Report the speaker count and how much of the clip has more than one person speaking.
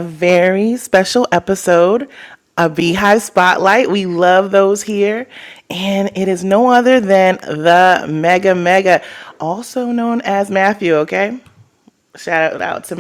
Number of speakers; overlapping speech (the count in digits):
1, no overlap